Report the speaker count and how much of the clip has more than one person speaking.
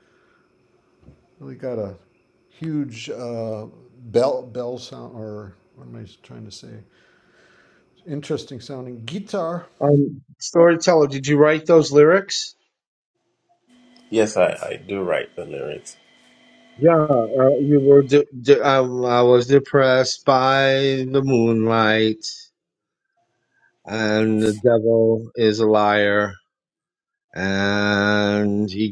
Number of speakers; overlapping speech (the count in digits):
3, no overlap